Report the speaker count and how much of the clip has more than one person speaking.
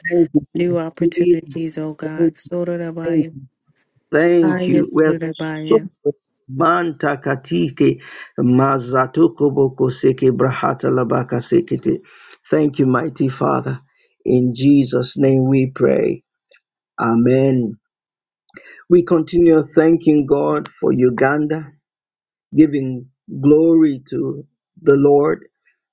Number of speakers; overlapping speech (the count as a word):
two, about 6%